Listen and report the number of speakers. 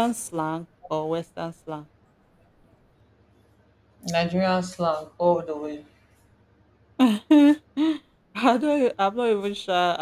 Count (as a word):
two